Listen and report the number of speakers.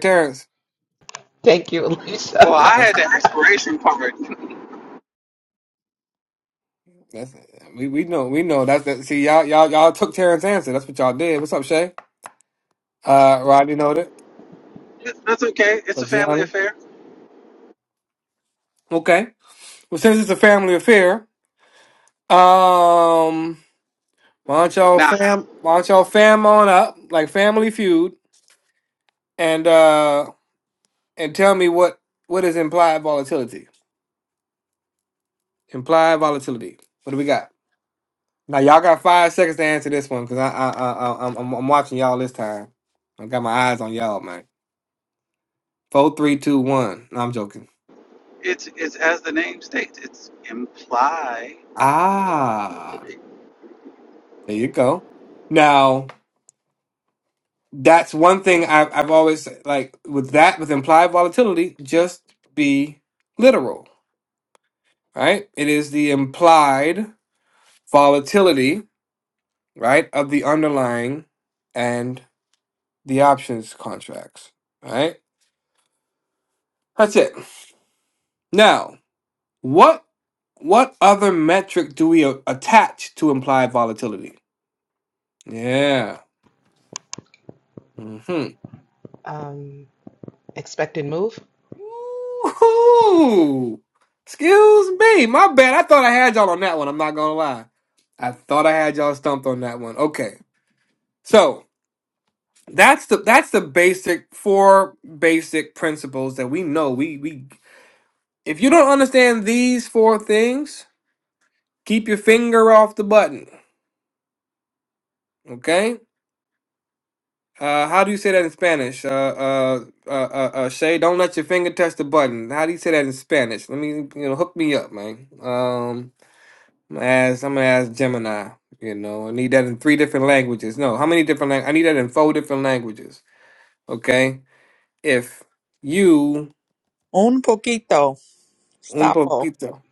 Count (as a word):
four